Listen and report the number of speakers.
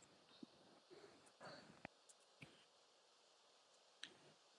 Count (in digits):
0